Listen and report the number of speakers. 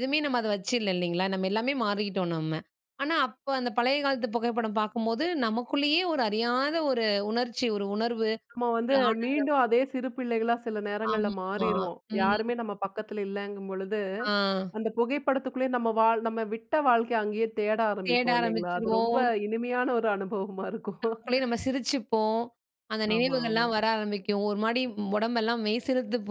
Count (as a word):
two